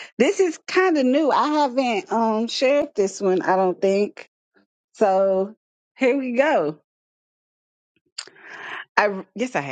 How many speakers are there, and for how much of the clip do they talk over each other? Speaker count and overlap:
1, no overlap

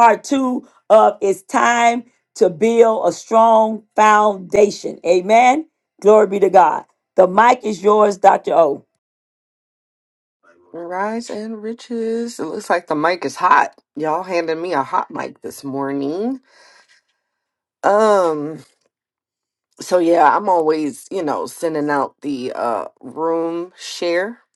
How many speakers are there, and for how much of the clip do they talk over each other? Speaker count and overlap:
2, no overlap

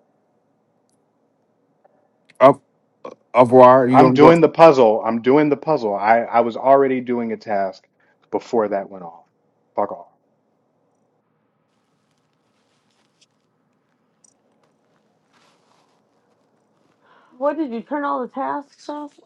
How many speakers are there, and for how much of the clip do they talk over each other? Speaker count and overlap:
3, about 2%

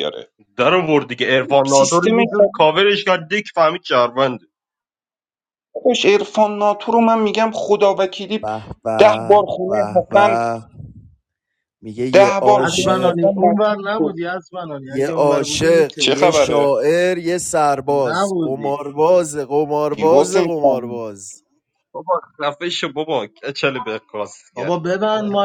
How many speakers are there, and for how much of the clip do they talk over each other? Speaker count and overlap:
4, about 27%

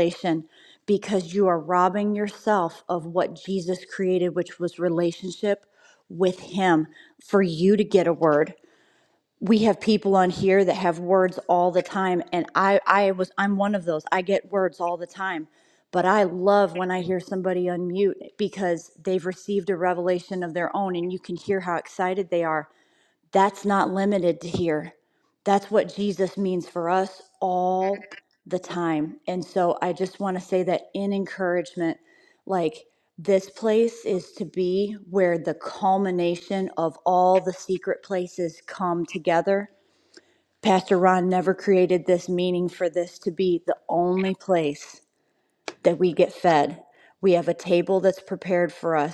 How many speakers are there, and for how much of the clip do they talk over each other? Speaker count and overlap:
1, no overlap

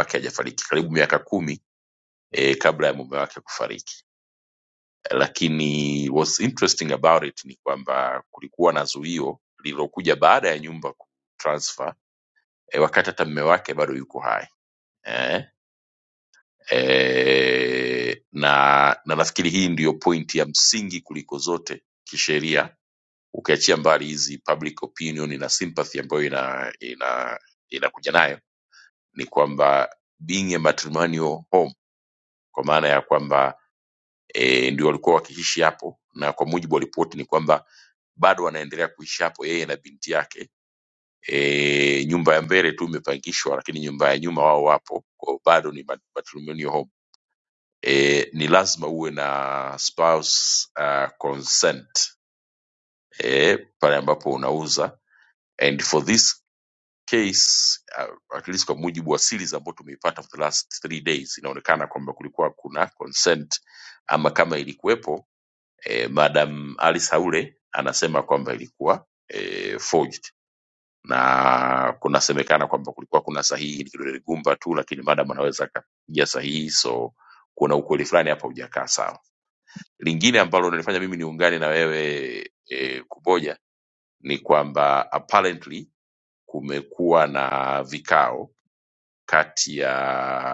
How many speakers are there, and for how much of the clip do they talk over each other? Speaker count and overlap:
1, no overlap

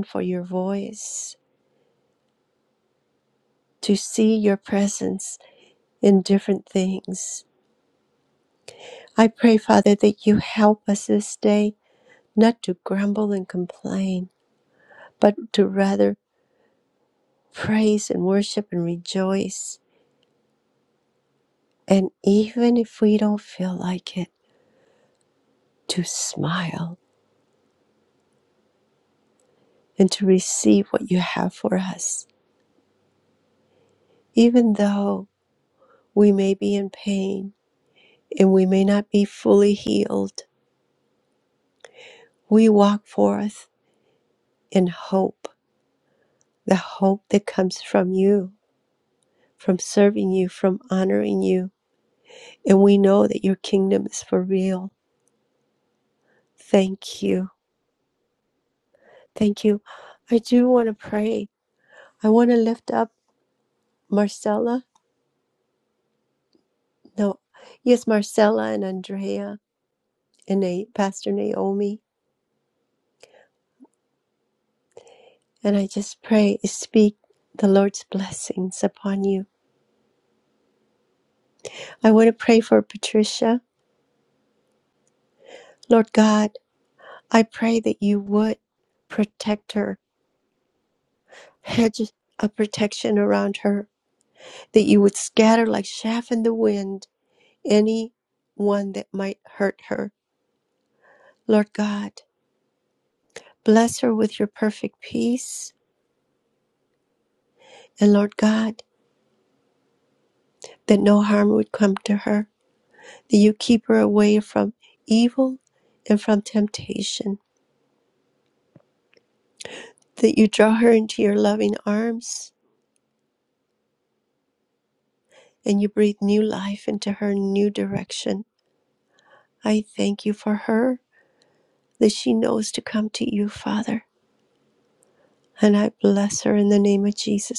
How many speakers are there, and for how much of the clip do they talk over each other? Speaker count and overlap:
1, no overlap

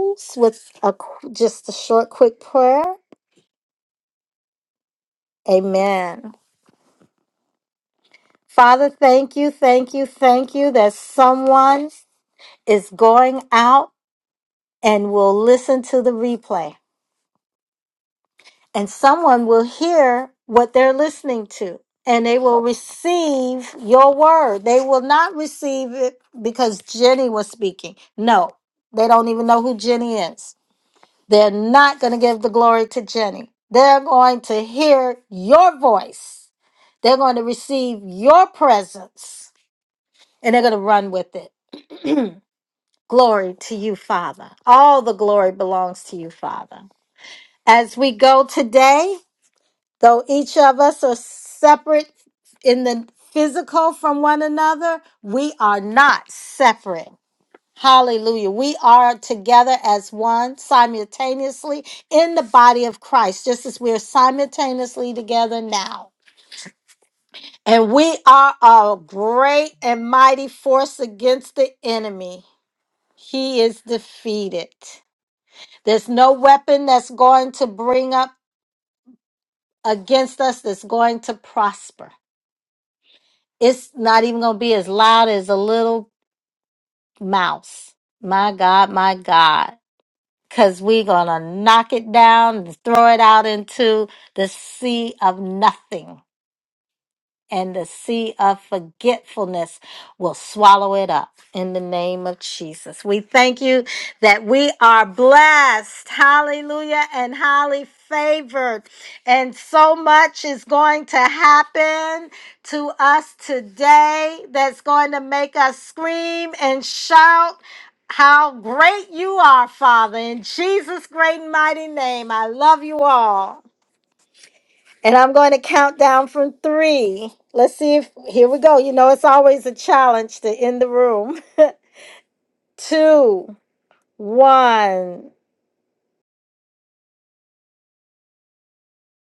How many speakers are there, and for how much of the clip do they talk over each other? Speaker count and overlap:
1, no overlap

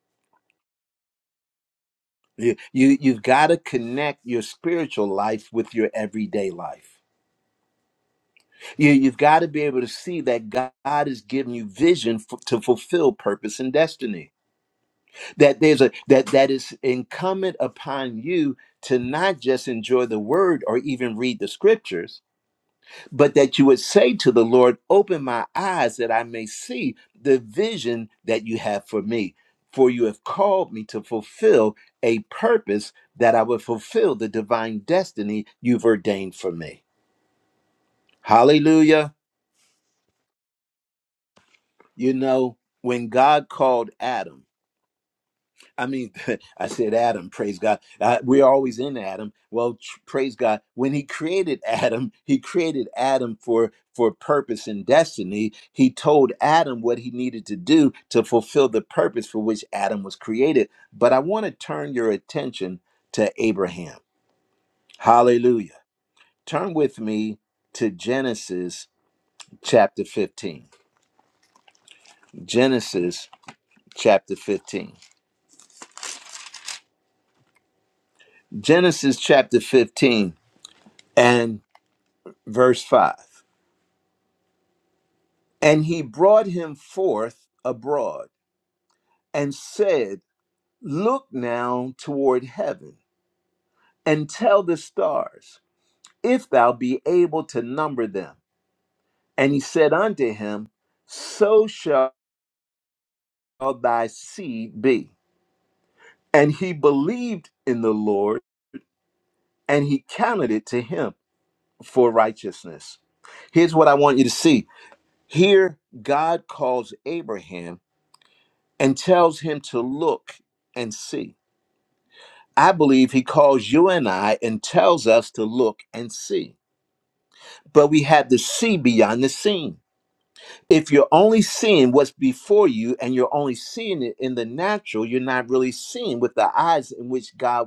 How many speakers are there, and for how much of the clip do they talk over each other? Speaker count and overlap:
1, no overlap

